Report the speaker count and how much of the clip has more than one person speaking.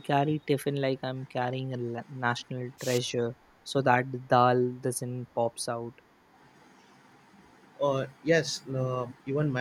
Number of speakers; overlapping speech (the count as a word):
two, no overlap